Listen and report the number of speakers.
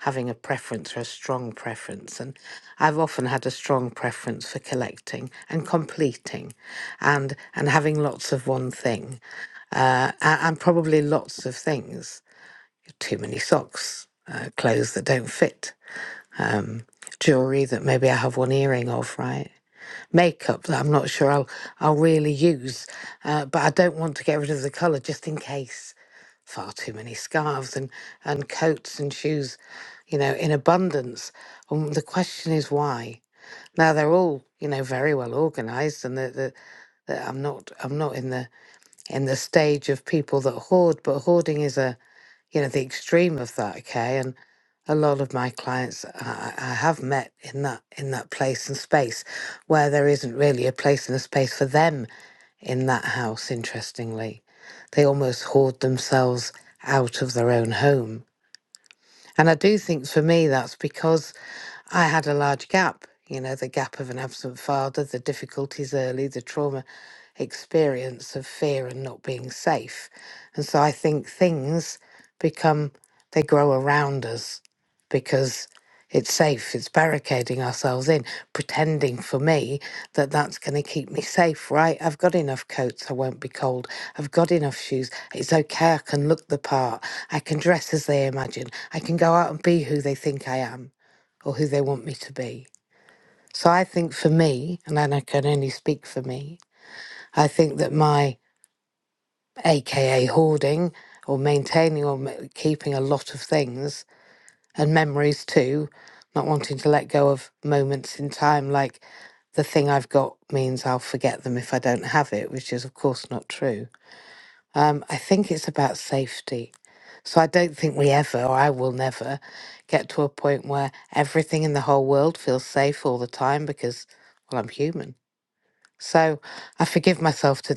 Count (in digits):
1